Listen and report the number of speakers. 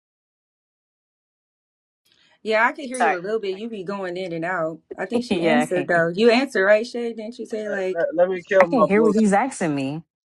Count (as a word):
three